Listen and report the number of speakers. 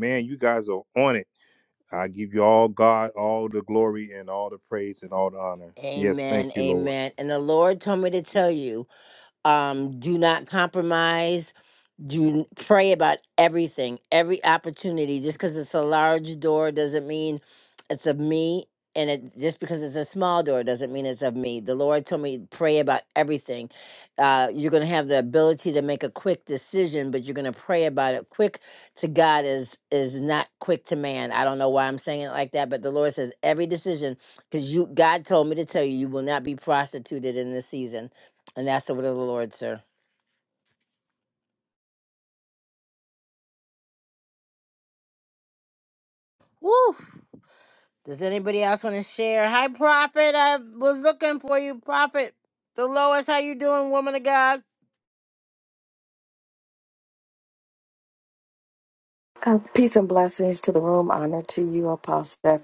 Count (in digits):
3